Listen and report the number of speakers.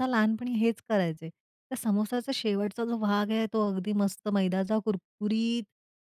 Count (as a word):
one